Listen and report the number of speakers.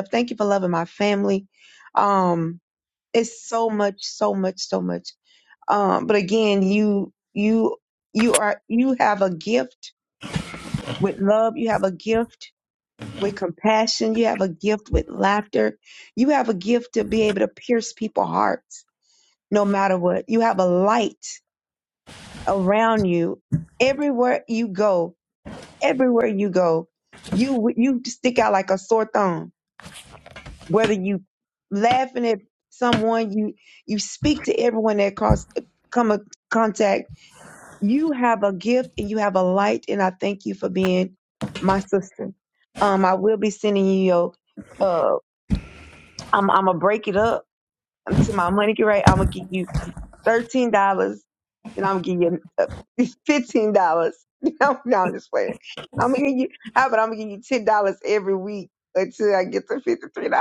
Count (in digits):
1